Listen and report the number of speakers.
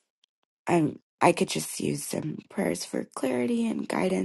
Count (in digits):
1